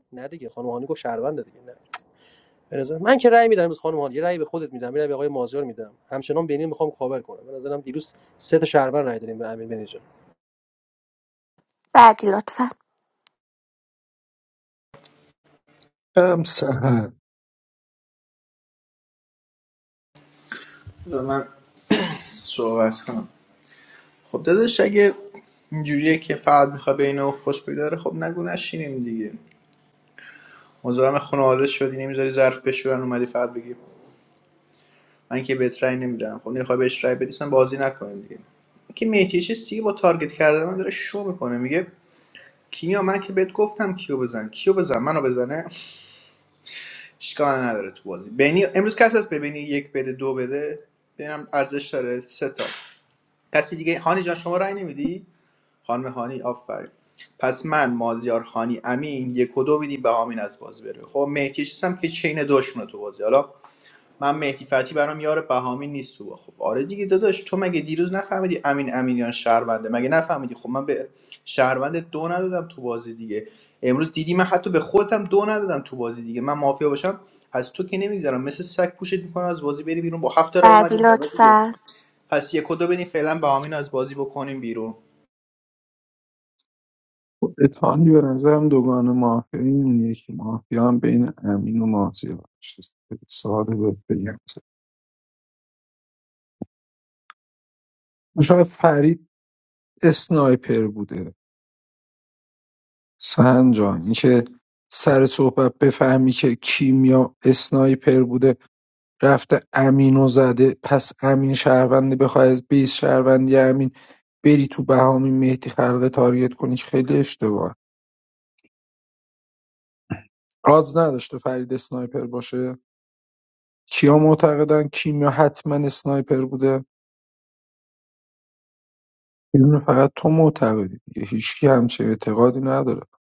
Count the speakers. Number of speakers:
four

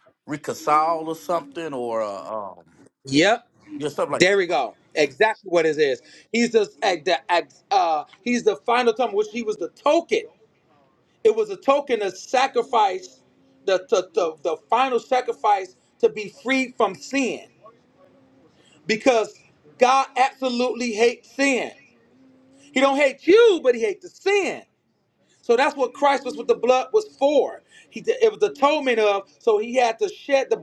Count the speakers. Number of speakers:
two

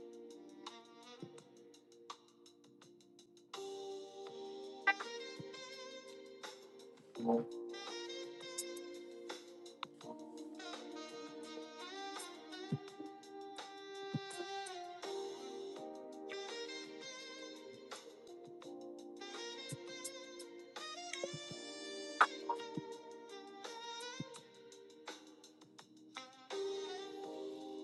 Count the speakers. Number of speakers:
zero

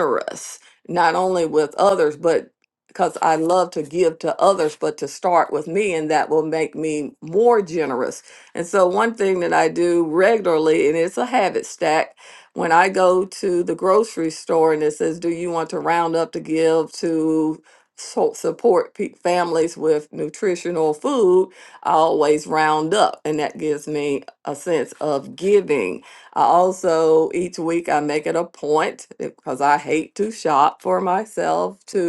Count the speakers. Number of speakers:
one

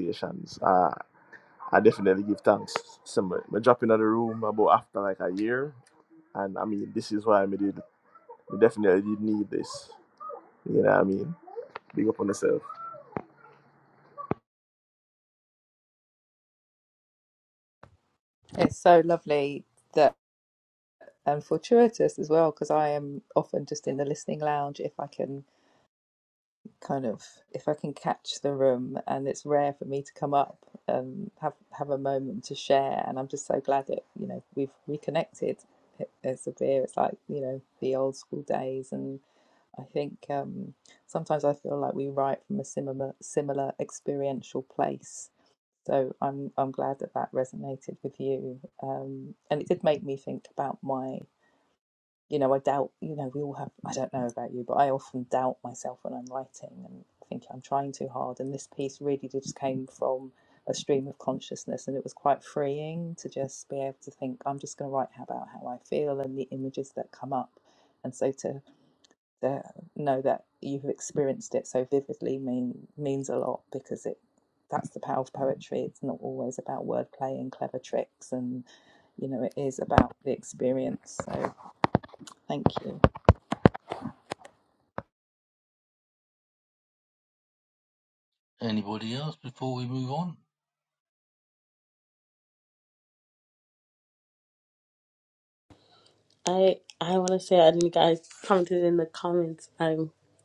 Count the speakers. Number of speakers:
four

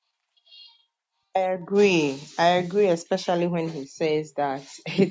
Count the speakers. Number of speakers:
one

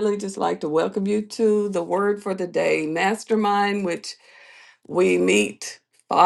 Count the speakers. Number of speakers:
one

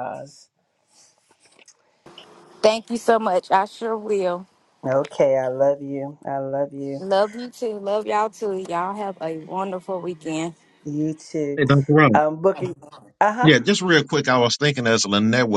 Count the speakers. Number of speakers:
three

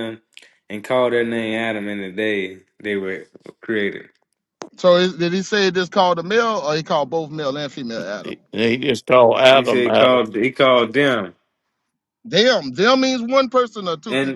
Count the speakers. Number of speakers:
three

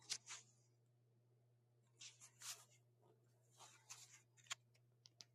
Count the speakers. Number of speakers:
zero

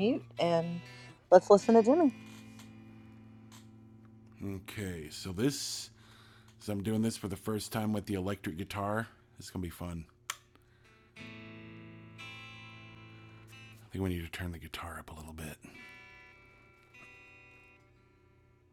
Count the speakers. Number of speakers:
two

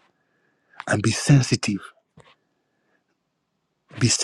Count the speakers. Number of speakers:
one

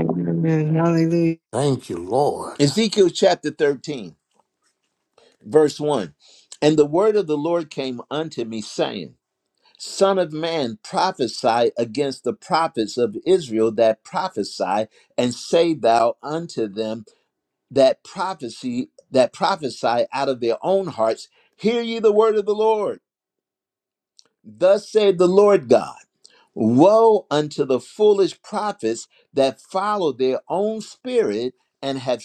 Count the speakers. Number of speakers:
three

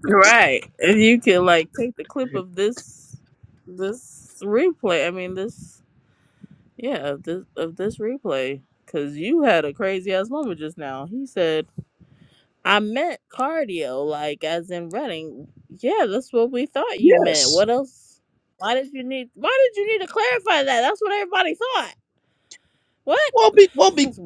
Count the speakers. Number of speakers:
two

